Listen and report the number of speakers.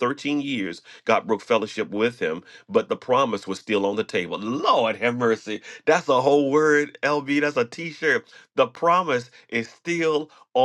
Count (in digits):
1